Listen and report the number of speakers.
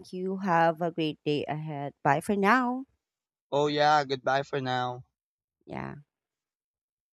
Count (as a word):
two